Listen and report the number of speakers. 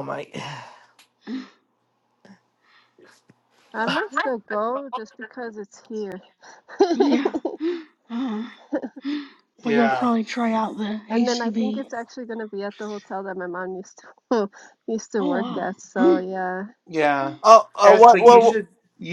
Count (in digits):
4